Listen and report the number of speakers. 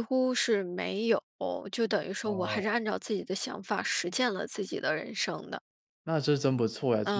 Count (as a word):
two